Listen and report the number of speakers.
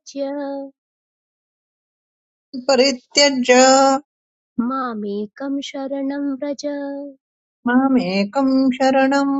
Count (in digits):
2